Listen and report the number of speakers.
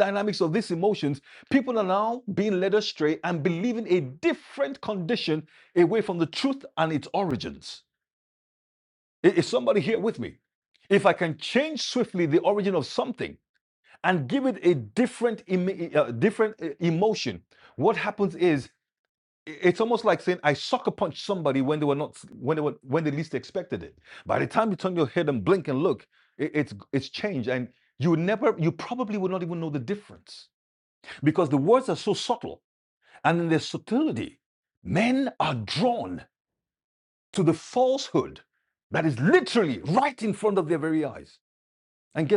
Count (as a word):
one